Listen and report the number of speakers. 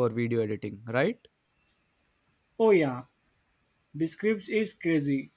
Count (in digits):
2